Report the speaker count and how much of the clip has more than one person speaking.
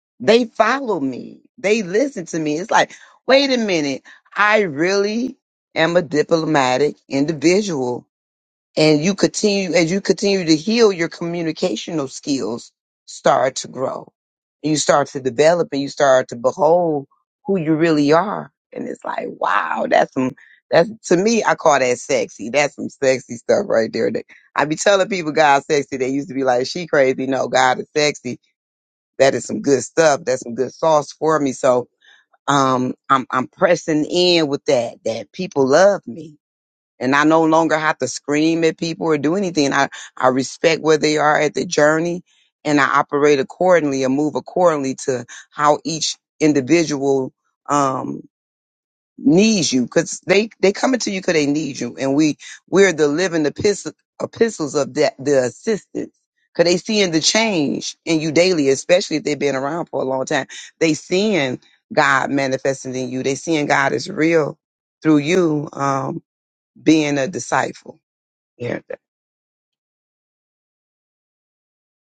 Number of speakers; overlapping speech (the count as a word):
one, no overlap